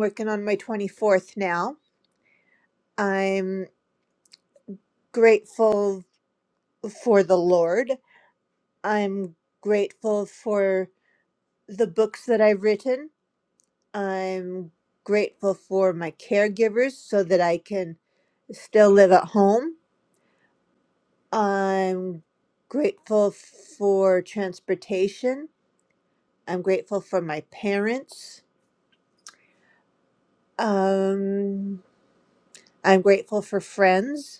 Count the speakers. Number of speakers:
1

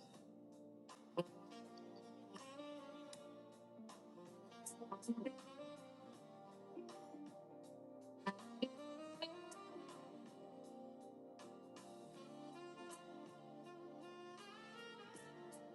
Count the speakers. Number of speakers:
0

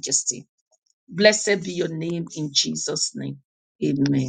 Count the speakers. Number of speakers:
1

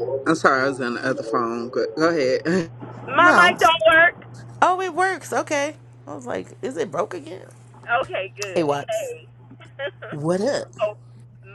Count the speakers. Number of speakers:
3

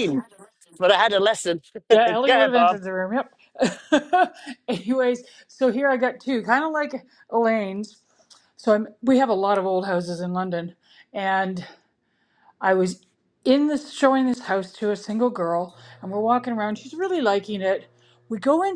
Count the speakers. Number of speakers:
2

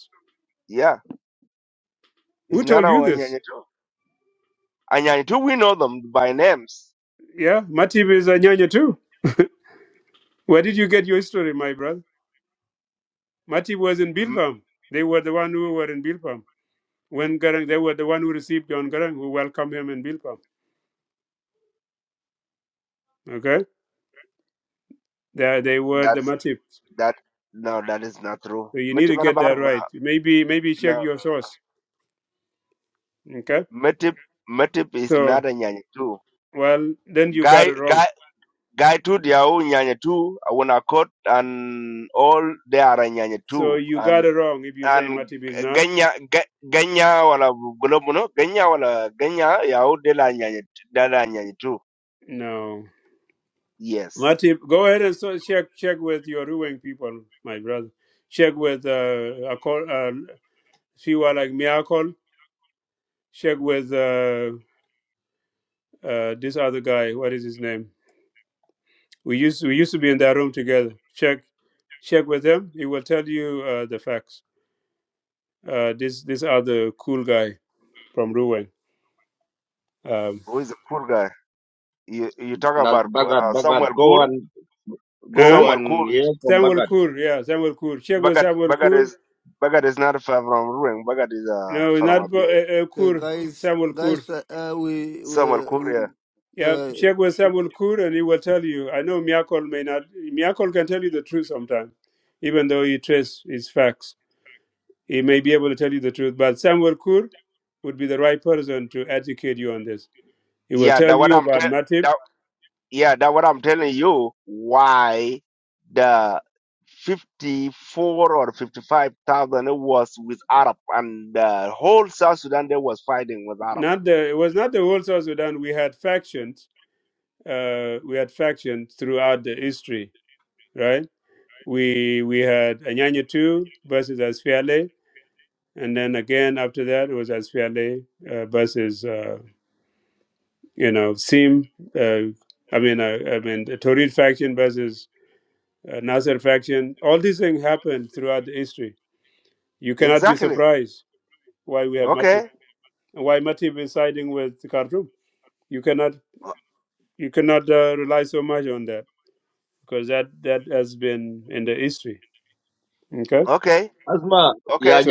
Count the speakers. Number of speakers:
4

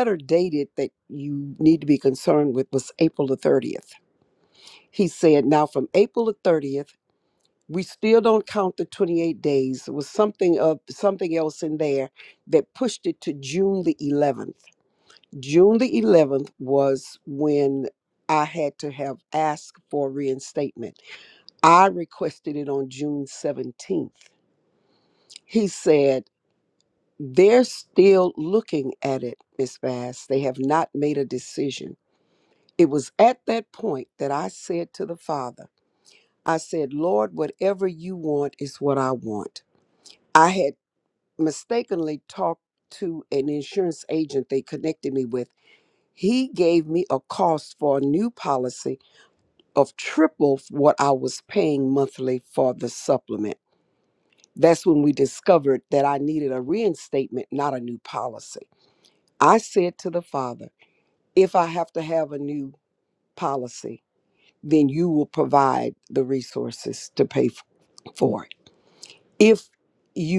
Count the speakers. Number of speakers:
1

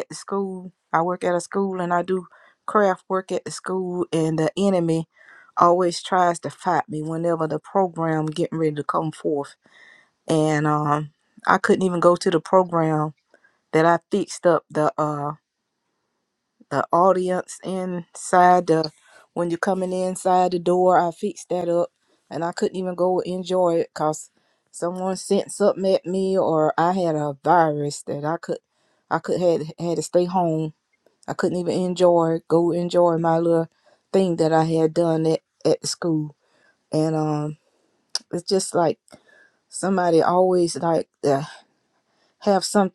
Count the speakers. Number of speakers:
1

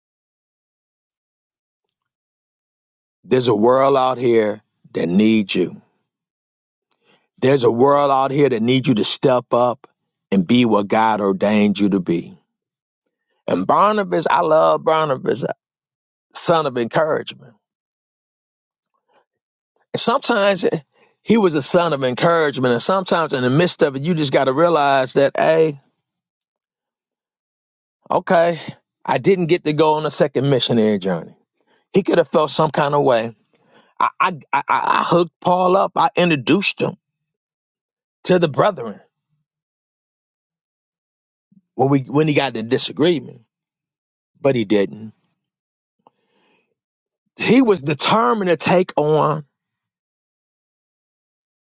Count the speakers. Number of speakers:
1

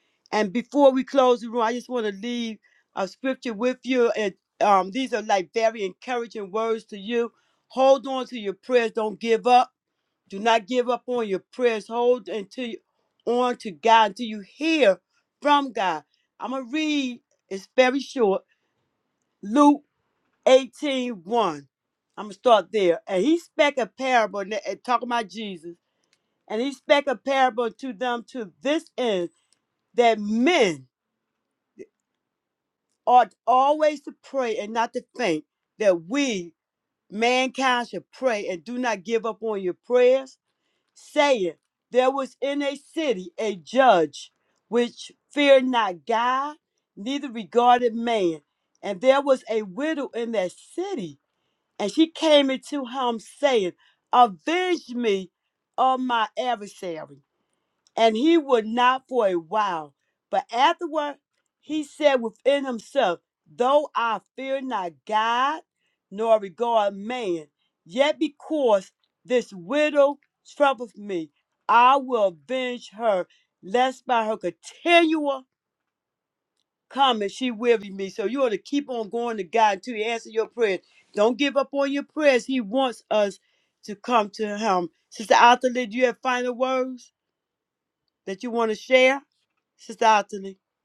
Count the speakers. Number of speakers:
1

